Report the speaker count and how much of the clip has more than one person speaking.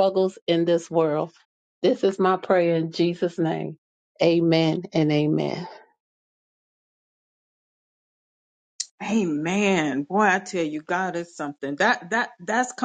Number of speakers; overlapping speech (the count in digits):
2, no overlap